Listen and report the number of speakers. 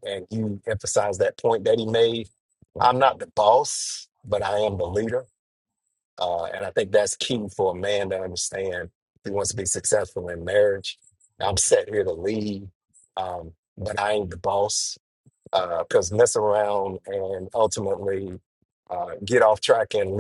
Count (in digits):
1